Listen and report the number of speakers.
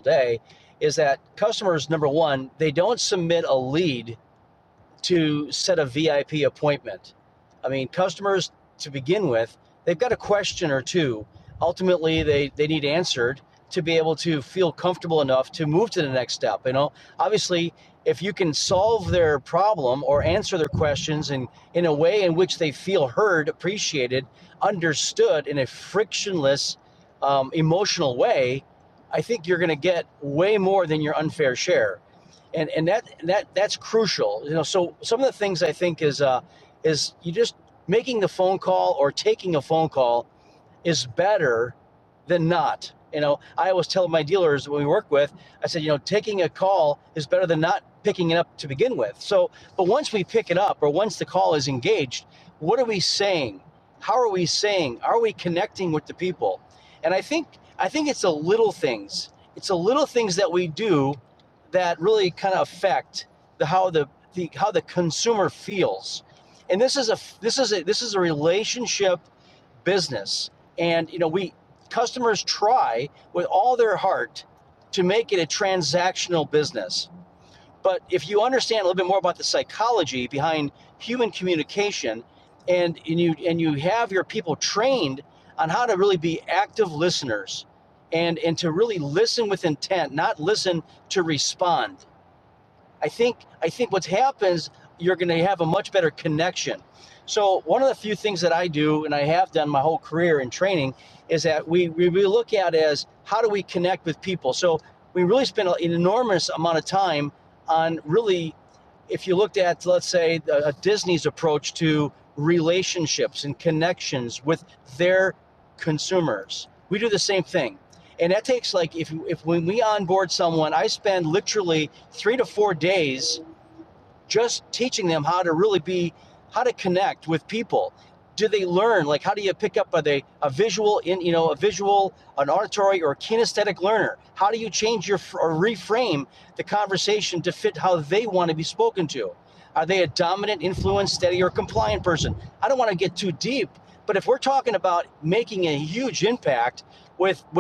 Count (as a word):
one